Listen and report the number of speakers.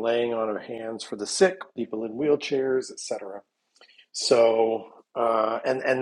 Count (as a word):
one